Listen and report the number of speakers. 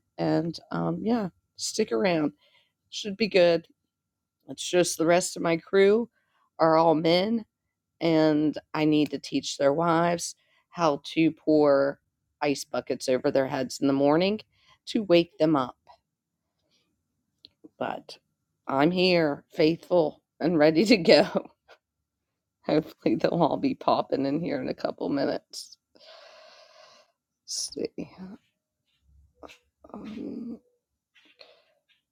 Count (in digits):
1